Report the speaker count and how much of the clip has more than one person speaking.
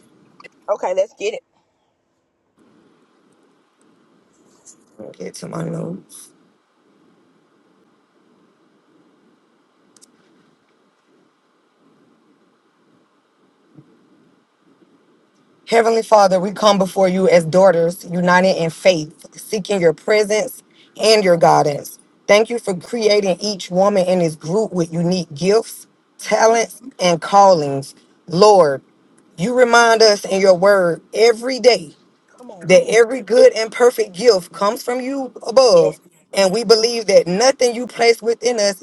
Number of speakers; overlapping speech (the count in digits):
2, about 2%